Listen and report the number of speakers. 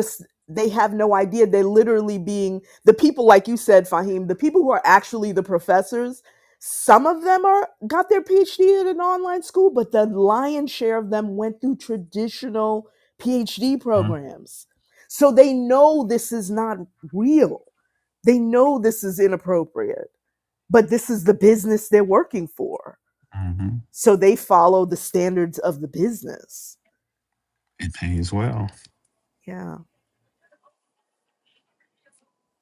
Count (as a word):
two